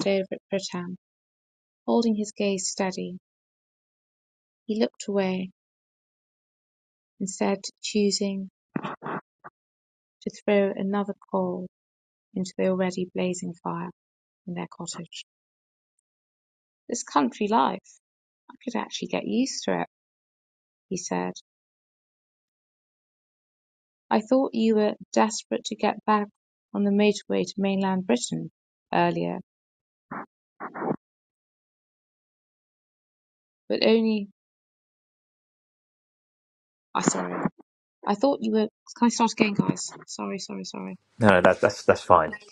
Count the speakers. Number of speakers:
two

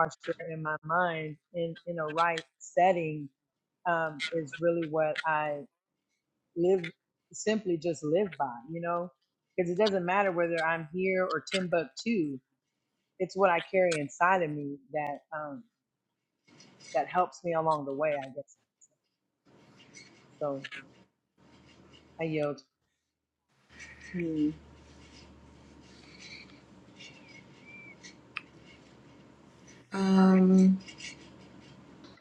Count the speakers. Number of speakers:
two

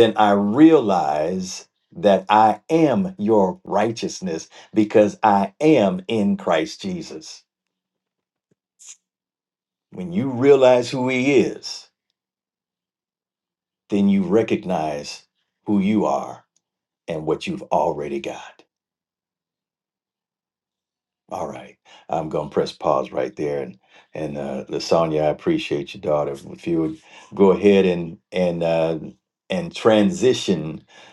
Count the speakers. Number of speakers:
one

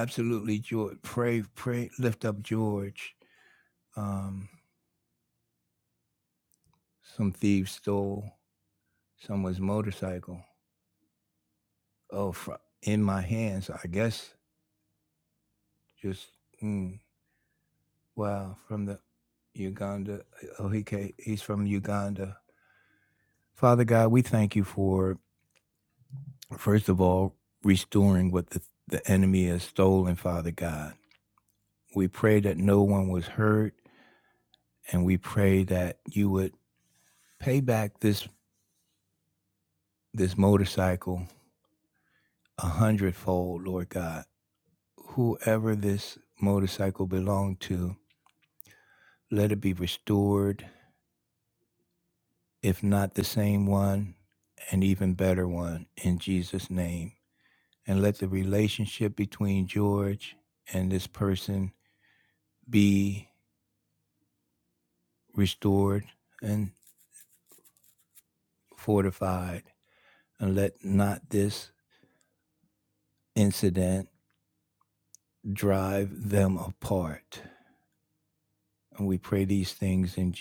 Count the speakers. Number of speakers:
one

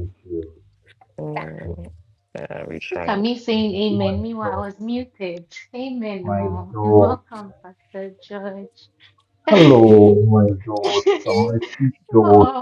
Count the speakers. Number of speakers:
three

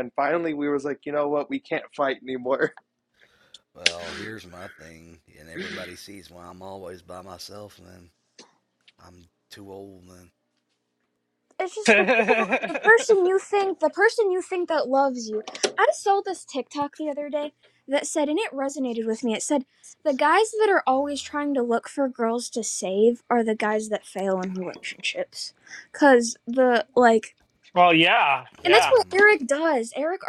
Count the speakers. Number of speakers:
four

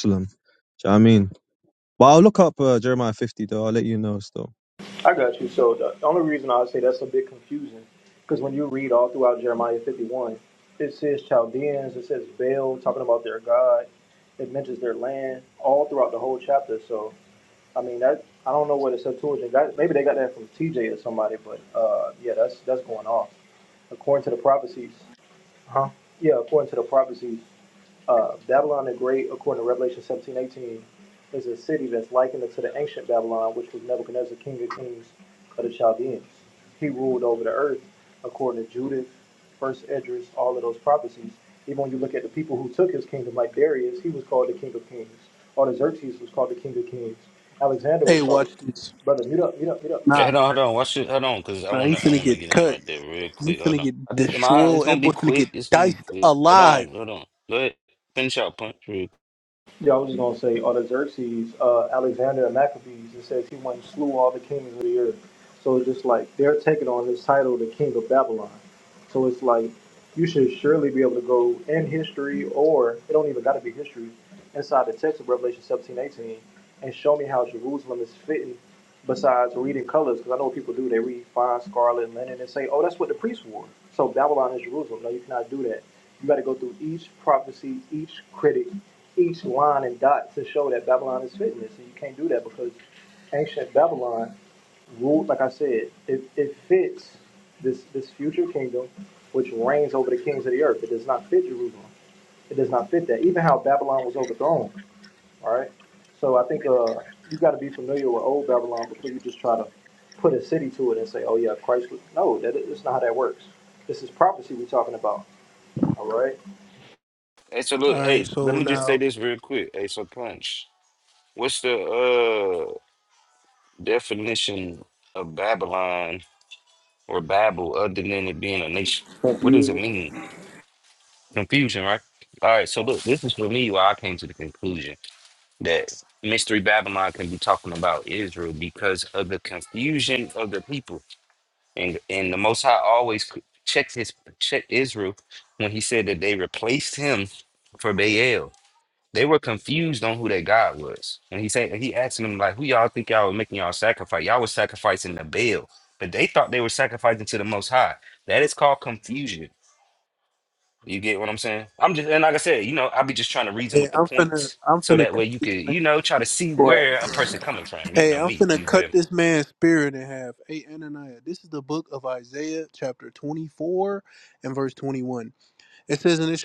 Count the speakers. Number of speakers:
four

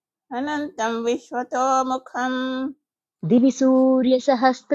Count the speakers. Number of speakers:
two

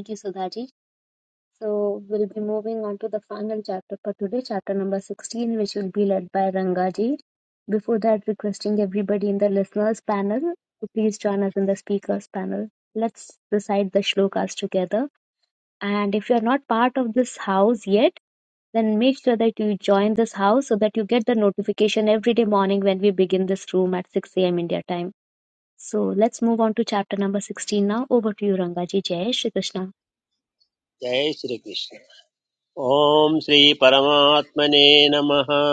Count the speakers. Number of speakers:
two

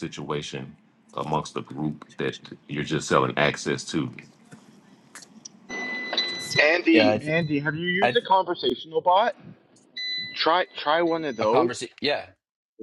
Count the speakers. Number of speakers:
three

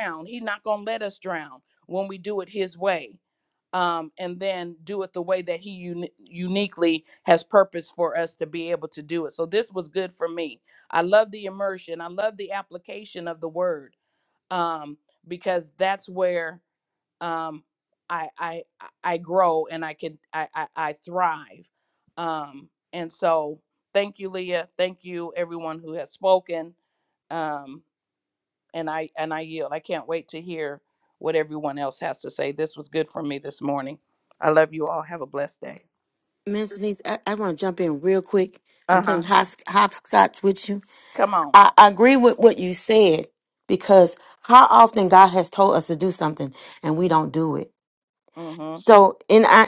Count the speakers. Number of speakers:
two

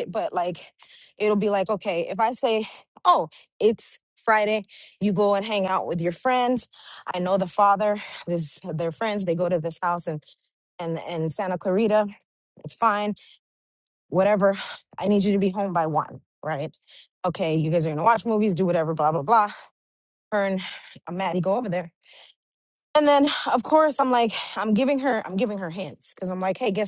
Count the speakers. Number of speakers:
one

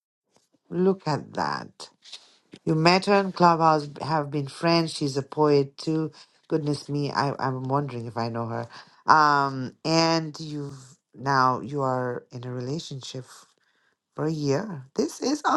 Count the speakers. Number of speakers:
one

